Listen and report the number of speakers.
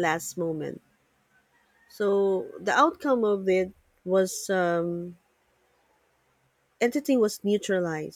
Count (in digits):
1